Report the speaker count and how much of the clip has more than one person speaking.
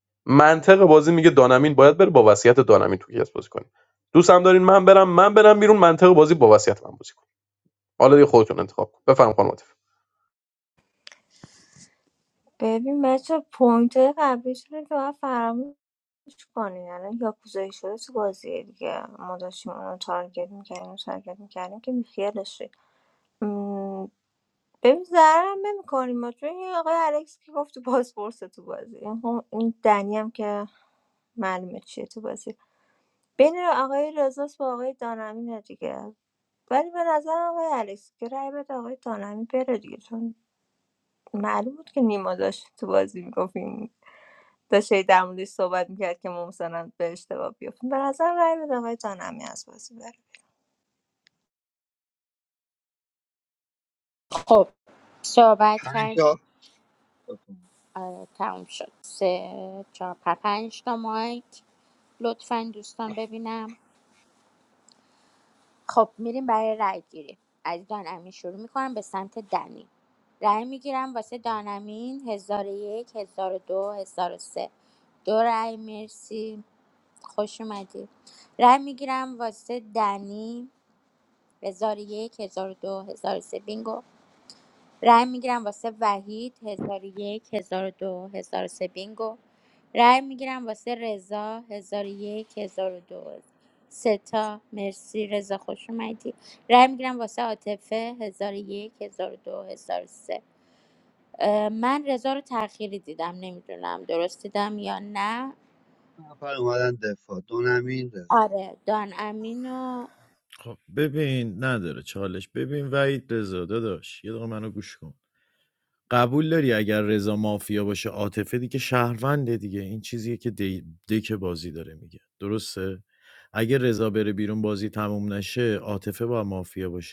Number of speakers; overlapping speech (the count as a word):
five, under 1%